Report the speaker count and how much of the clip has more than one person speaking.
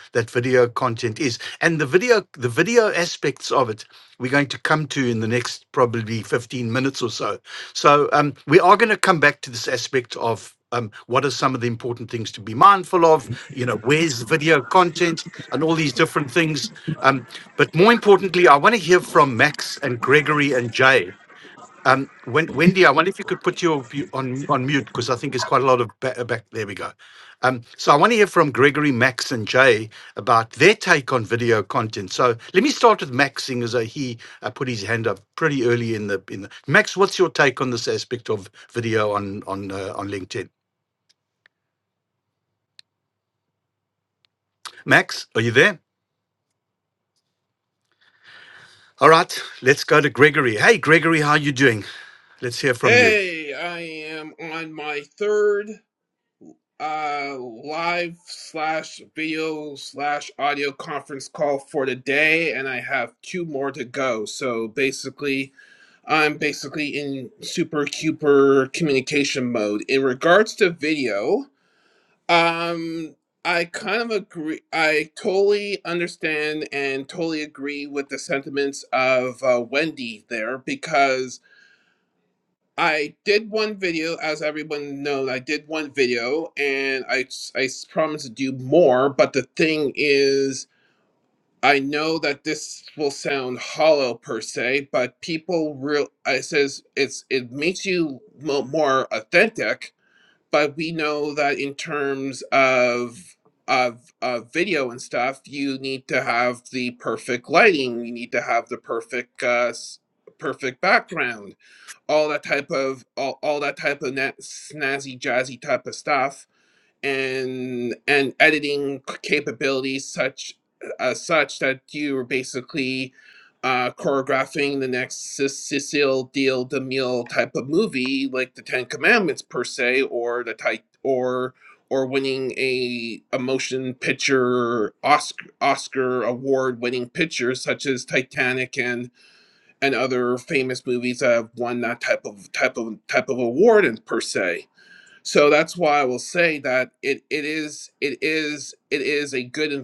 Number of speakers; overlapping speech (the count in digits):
2, under 1%